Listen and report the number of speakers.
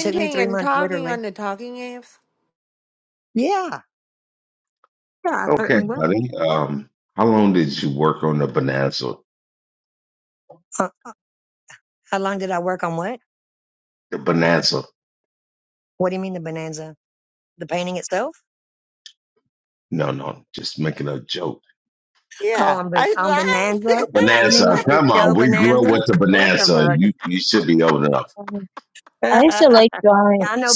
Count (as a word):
four